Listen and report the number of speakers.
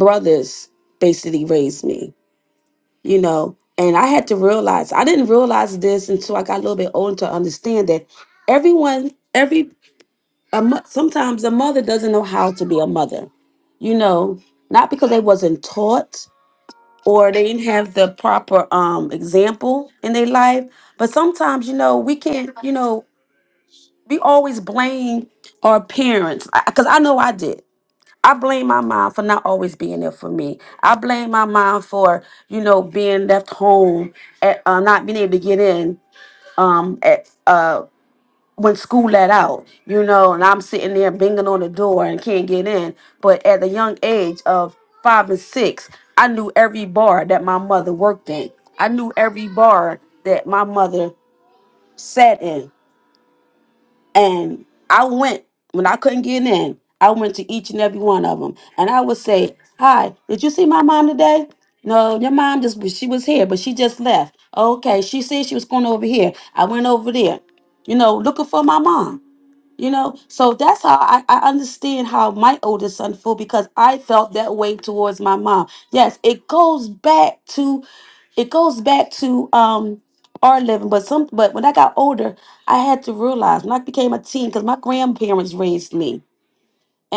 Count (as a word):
one